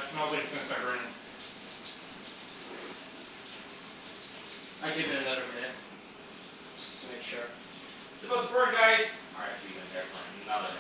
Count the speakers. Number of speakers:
3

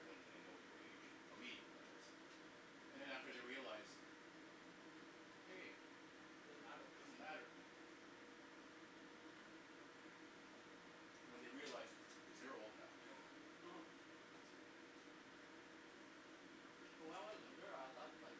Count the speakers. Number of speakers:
2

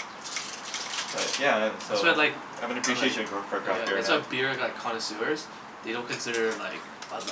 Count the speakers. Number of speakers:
2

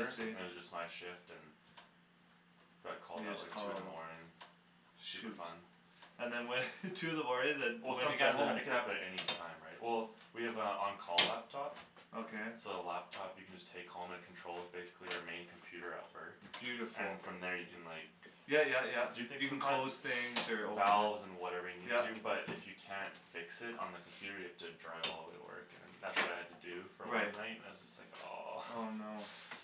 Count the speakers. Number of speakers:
2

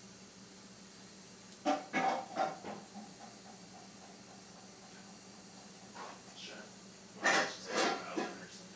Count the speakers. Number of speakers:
1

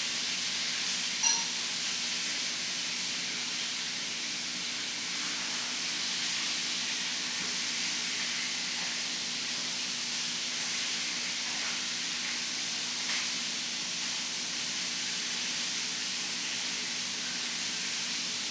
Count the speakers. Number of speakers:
0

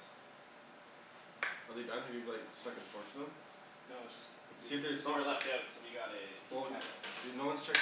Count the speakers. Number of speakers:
2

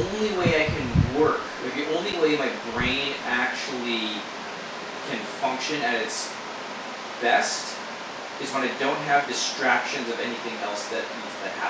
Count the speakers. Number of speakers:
1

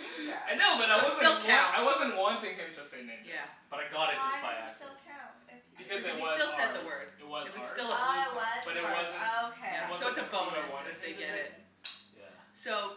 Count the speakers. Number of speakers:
4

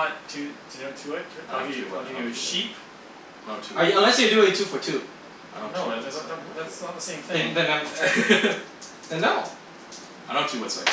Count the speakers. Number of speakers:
3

